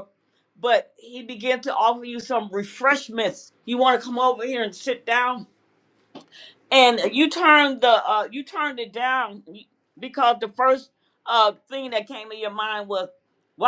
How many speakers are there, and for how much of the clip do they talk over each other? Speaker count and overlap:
one, no overlap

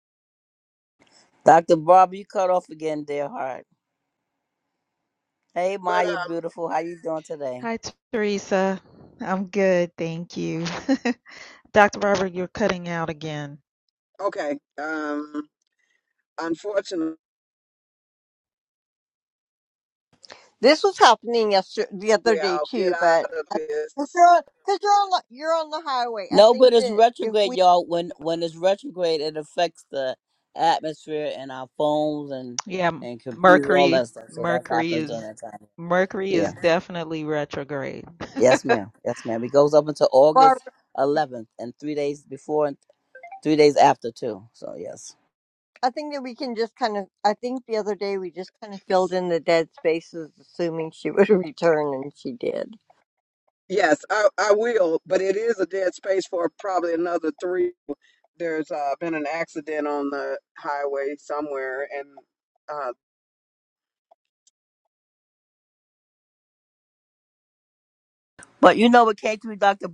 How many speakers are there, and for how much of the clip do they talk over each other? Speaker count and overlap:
four, about 8%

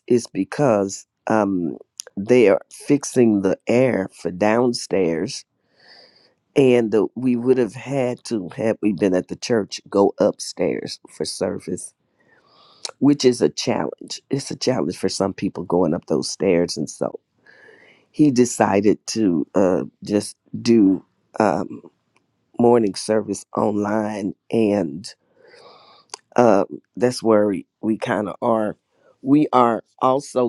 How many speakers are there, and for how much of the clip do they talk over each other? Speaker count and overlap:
one, no overlap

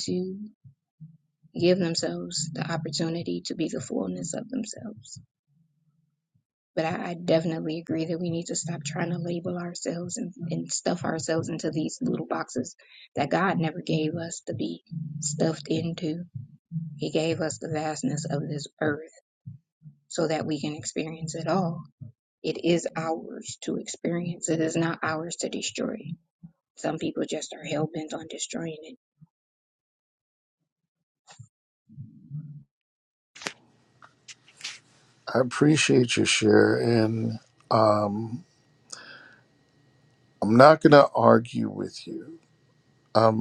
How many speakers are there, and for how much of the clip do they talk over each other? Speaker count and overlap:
two, no overlap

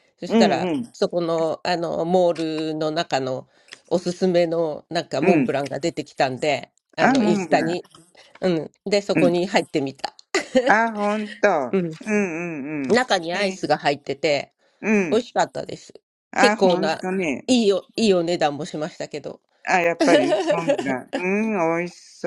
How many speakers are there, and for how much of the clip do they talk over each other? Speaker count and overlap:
two, about 13%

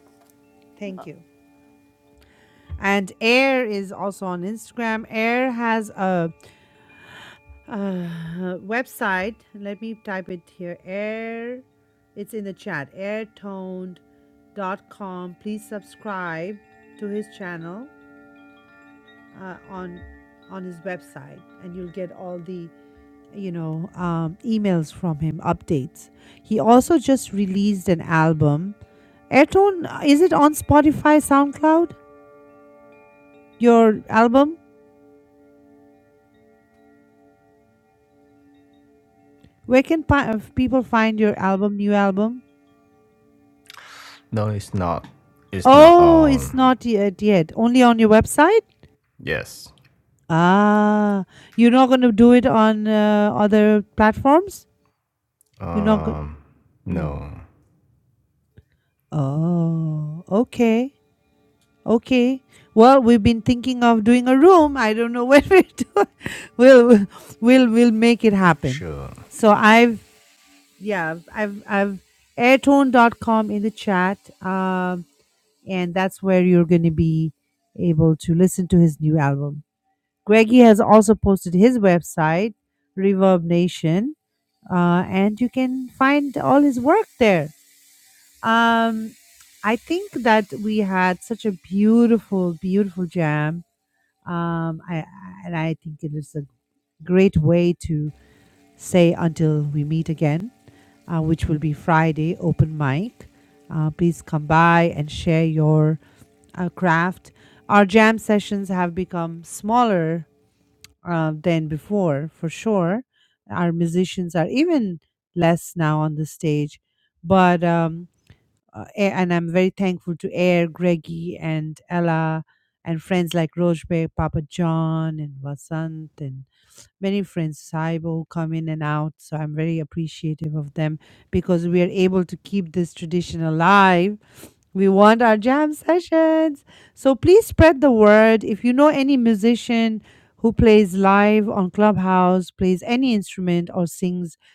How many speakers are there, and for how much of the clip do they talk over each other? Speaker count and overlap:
two, about 1%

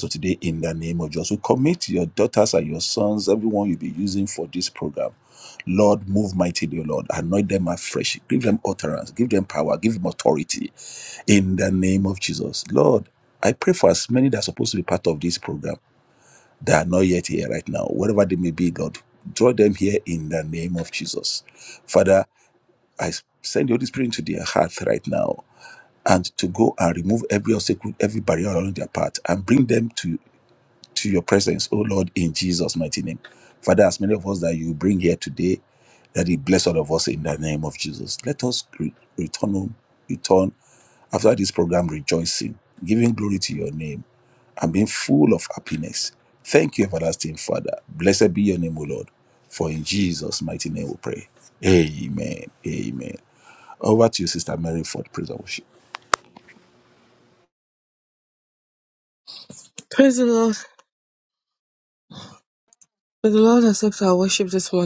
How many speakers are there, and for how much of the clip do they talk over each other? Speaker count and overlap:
two, no overlap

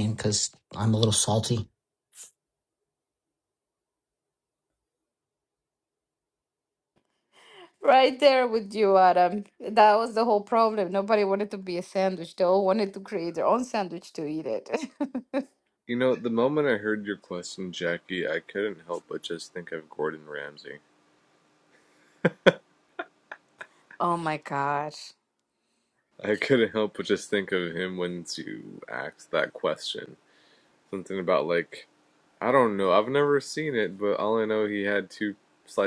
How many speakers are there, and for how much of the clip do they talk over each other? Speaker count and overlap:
three, no overlap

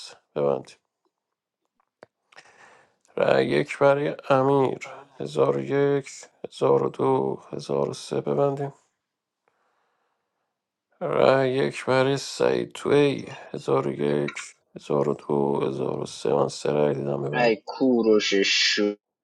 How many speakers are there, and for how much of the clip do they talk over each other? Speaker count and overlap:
two, about 1%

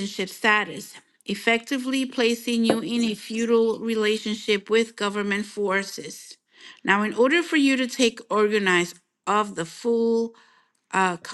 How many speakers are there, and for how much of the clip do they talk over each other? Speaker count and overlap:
one, no overlap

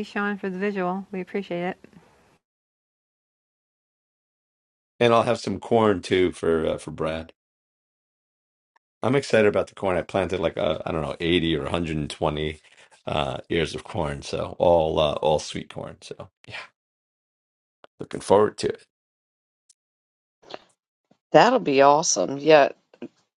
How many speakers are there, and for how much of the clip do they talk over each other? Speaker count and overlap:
three, no overlap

